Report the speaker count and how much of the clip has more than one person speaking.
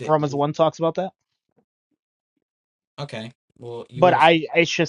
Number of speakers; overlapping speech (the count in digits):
2, about 8%